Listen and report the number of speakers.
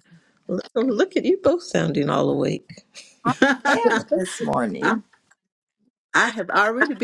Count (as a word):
three